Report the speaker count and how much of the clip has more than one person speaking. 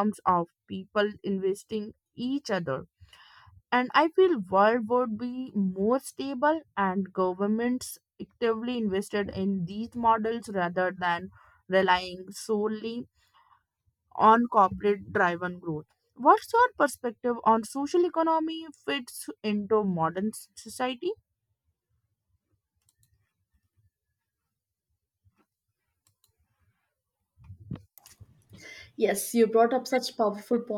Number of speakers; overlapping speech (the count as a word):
two, no overlap